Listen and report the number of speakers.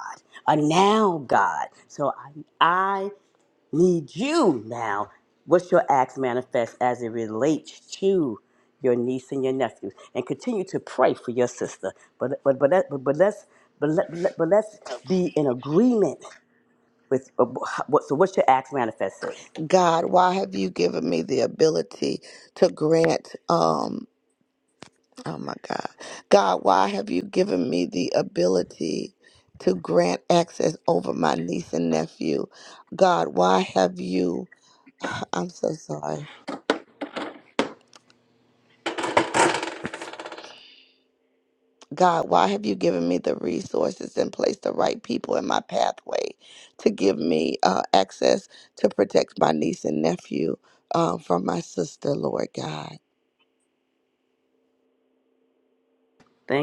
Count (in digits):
2